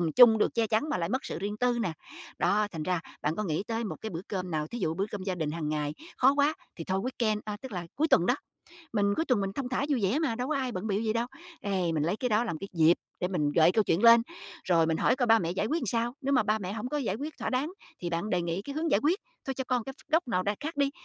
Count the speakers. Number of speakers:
one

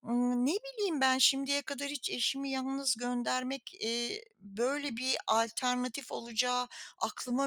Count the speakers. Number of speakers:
one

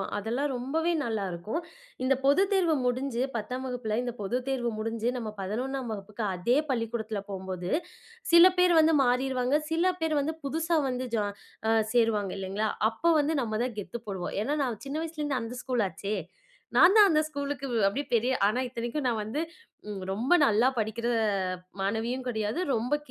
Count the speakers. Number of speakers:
one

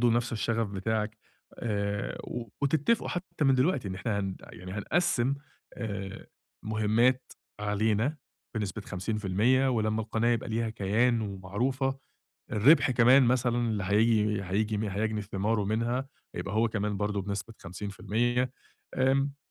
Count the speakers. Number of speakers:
one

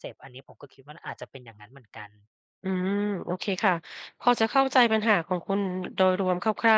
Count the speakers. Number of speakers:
two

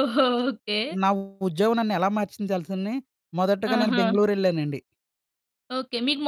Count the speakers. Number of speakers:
two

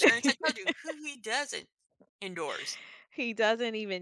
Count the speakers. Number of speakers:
two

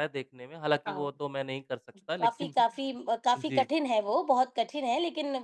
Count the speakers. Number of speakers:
two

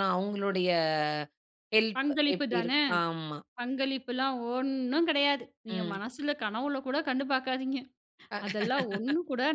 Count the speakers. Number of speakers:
two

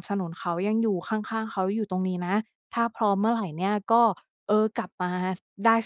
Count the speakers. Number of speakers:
one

